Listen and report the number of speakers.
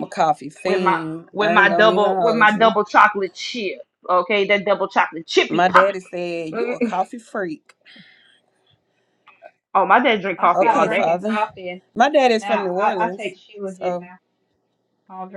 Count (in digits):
3